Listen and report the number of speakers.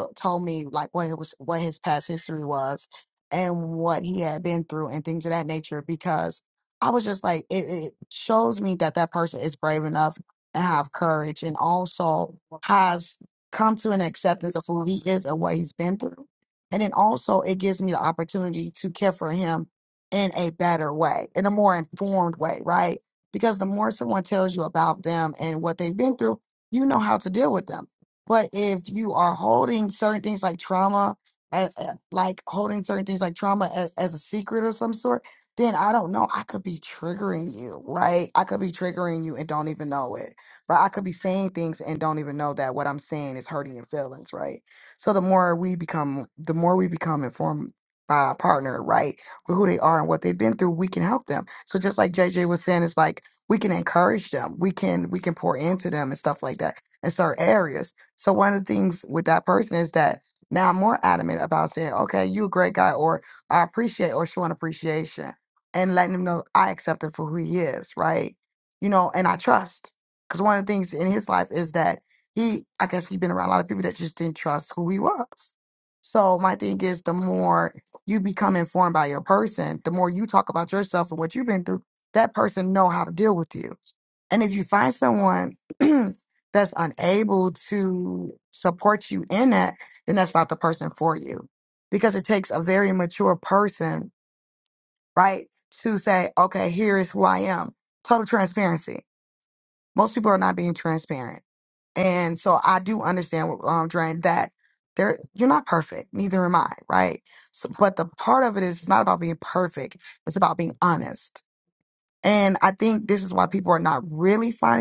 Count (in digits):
1